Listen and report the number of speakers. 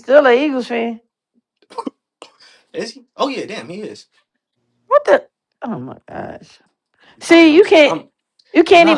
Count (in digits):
2